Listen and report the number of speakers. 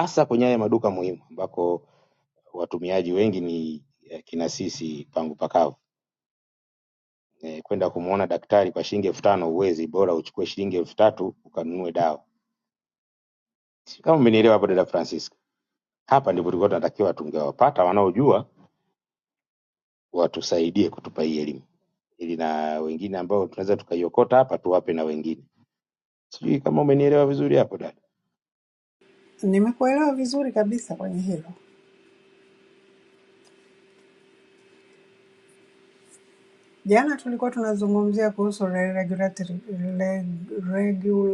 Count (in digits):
2